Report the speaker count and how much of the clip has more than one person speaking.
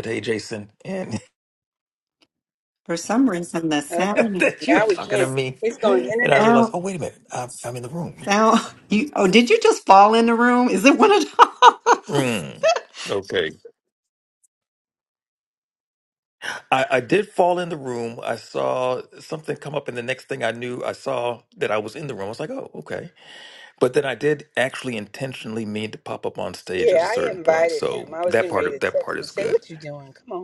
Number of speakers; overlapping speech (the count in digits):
3, about 18%